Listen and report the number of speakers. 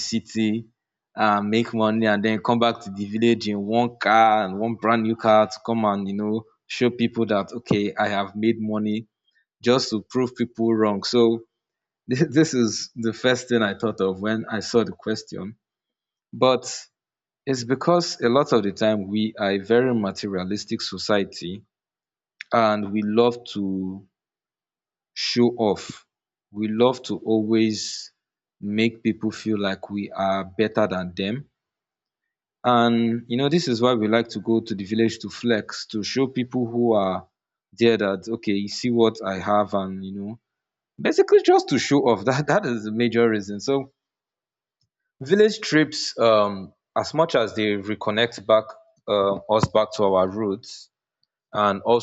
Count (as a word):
one